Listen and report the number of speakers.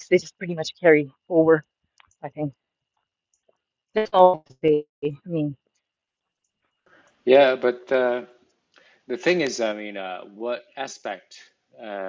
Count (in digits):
2